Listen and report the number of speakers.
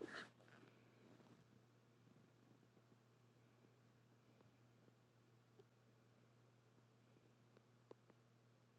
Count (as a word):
zero